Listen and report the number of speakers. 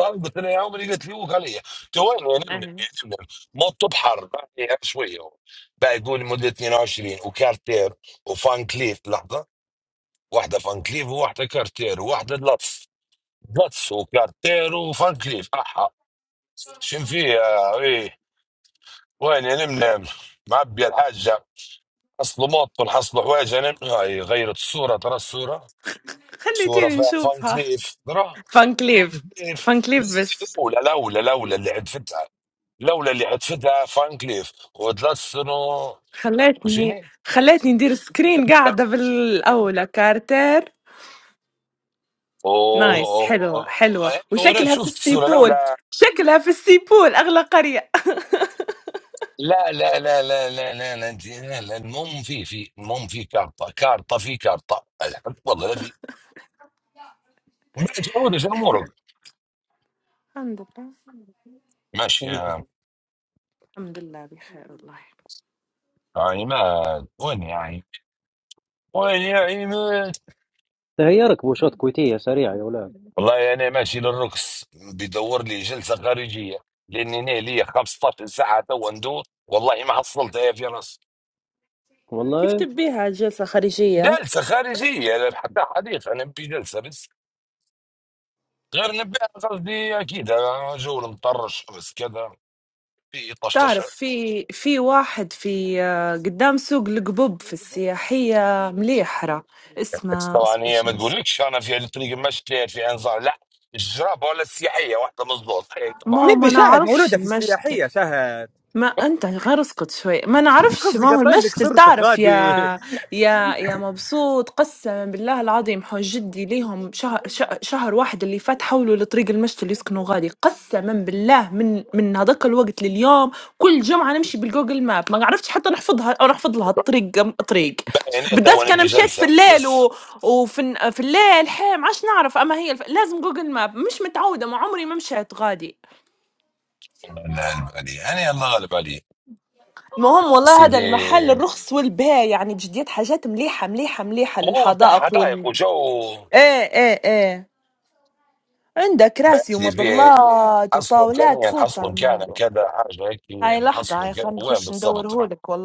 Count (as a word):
four